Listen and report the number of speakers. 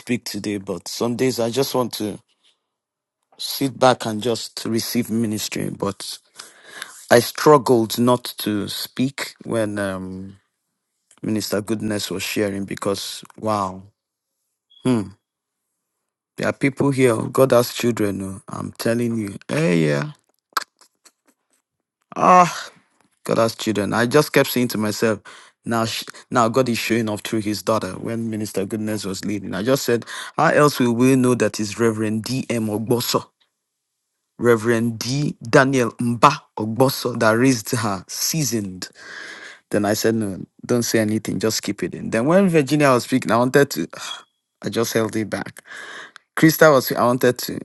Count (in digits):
1